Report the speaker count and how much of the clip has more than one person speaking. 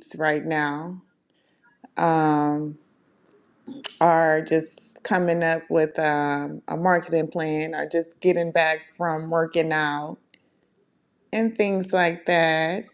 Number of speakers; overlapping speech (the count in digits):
1, no overlap